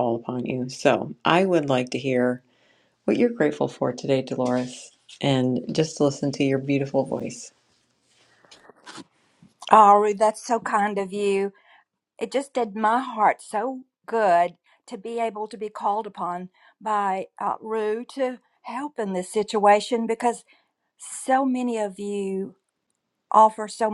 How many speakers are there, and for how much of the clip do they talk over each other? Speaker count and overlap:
2, no overlap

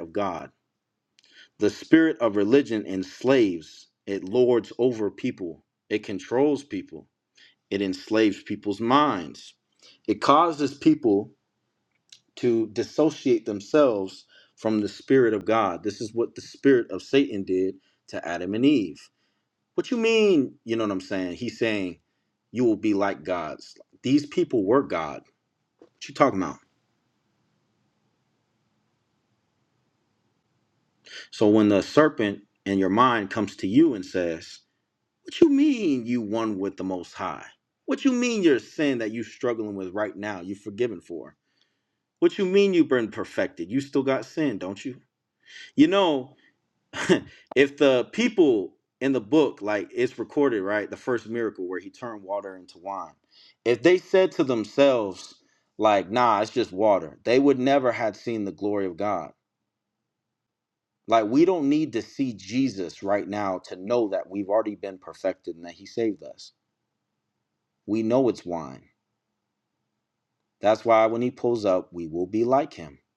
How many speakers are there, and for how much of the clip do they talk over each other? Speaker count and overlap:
1, no overlap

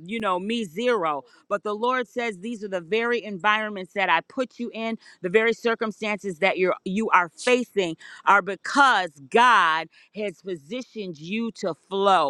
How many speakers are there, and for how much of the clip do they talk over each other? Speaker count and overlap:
1, no overlap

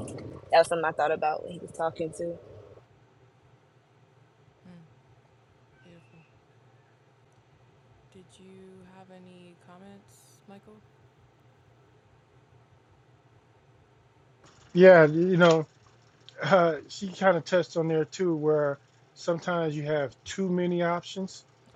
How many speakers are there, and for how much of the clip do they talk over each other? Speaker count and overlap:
3, no overlap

